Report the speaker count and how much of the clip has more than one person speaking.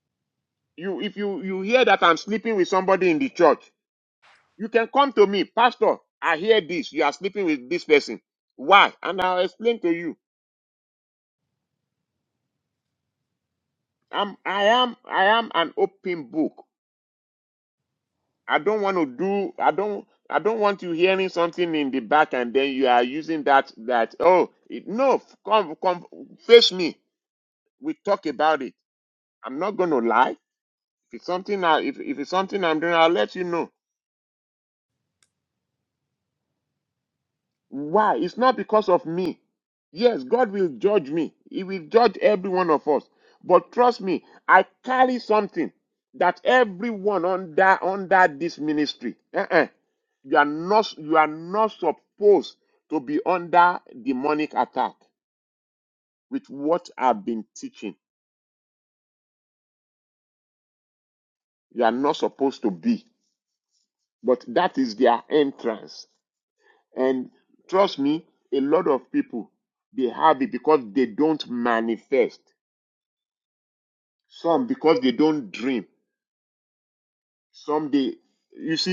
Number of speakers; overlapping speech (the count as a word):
one, no overlap